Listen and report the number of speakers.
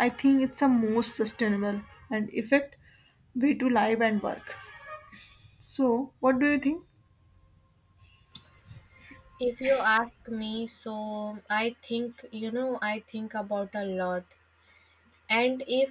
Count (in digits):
2